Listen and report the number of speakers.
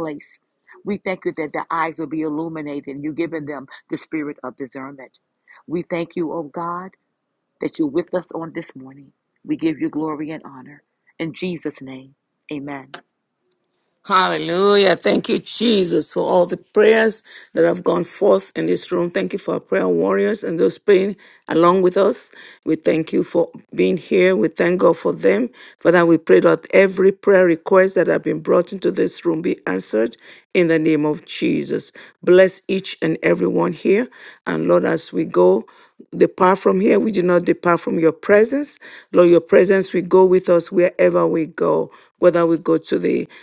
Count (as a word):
two